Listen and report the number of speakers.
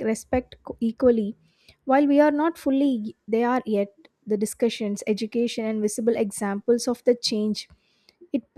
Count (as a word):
one